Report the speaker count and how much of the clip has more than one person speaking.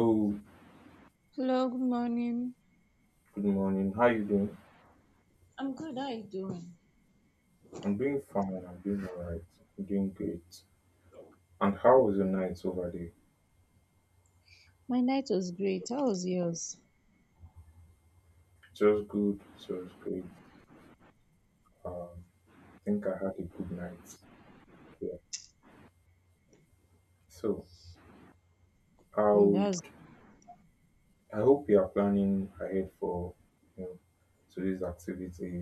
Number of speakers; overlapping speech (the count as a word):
two, about 1%